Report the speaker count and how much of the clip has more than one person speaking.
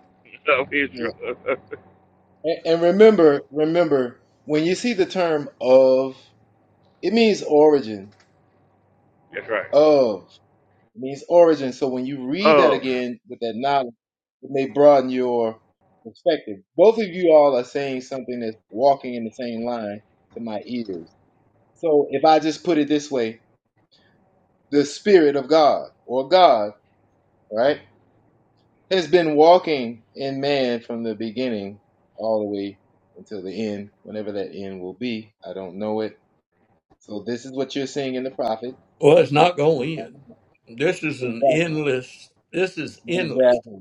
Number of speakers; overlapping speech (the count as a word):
three, about 4%